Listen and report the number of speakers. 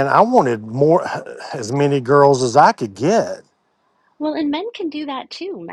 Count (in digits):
2